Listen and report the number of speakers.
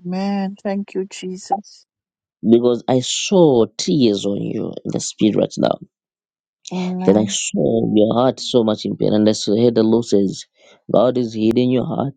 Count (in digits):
2